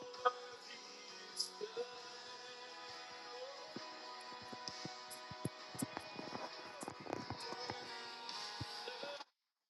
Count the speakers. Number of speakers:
zero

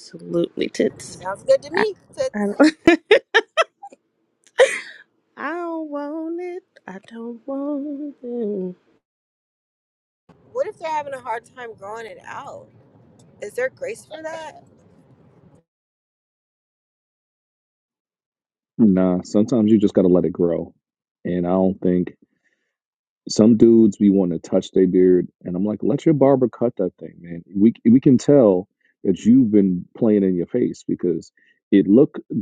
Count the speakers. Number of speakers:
three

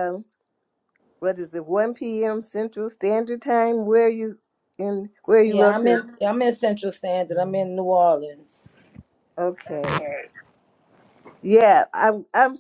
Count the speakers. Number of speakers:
two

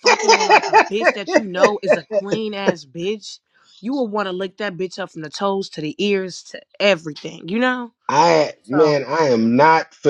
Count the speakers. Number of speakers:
two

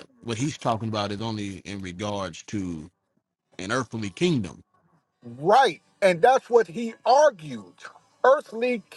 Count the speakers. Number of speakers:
two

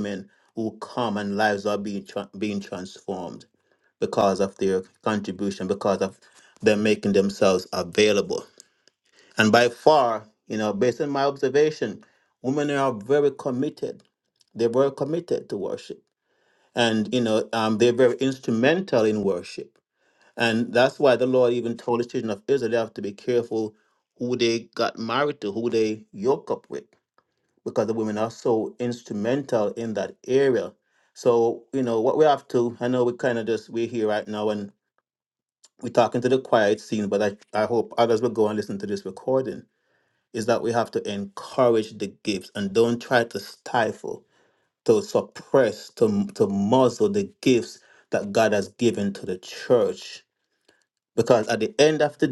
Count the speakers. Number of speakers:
one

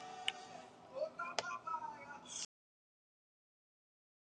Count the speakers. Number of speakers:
zero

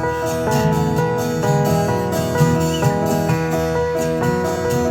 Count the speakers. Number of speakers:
zero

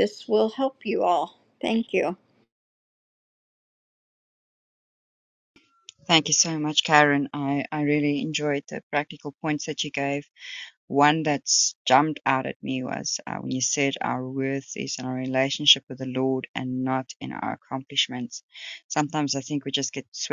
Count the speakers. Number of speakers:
two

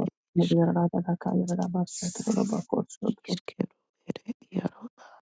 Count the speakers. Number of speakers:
two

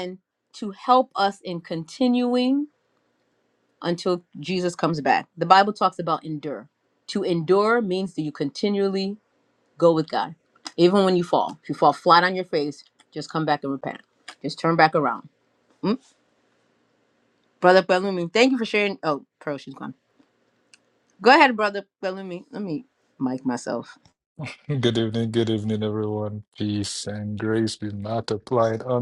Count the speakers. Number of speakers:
two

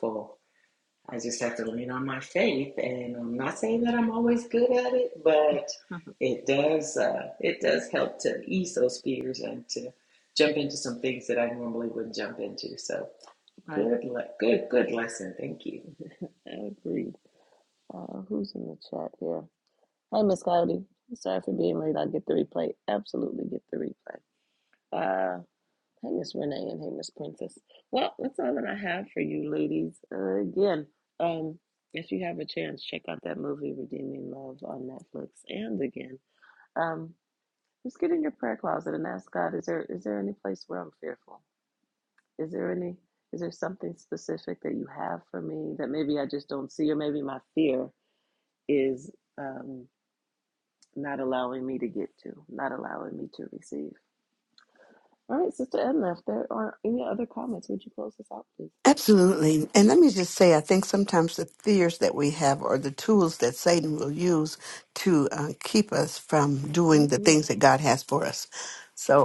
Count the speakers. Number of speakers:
three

